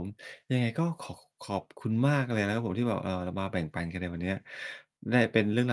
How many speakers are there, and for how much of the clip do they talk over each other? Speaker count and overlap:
1, no overlap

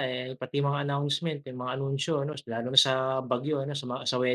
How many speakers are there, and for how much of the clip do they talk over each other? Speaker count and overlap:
1, no overlap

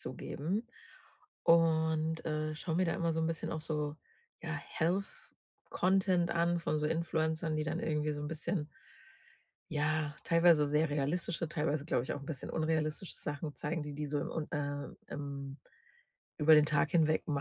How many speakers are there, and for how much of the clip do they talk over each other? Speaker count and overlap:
1, no overlap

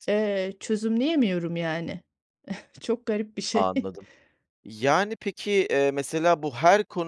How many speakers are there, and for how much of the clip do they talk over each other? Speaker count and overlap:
2, about 3%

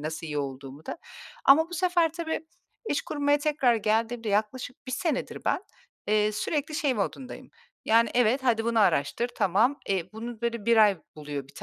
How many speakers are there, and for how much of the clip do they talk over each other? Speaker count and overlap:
1, no overlap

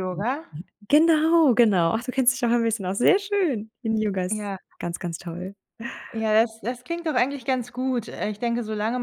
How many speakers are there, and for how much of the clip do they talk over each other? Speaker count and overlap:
2, about 2%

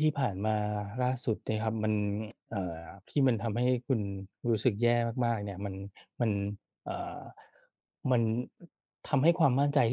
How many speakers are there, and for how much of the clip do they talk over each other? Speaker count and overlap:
1, no overlap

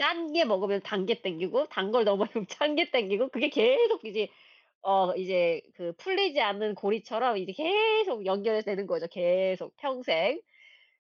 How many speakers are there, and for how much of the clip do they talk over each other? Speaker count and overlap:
1, no overlap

